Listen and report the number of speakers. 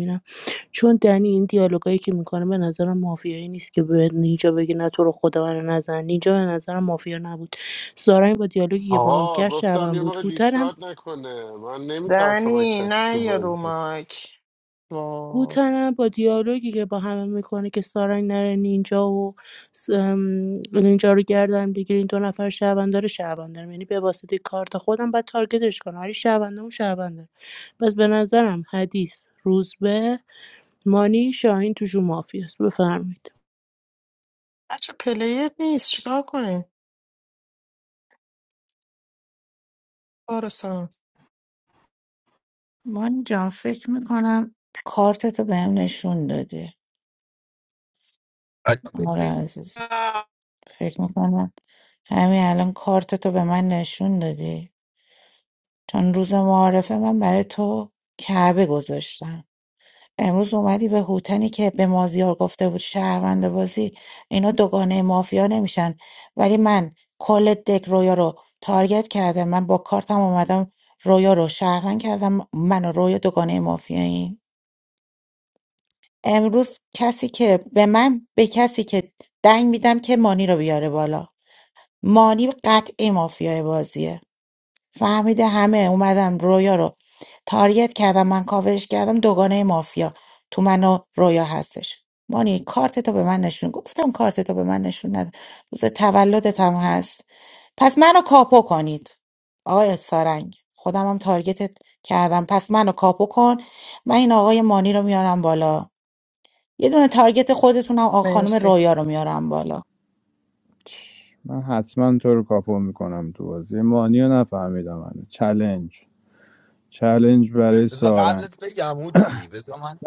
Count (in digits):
6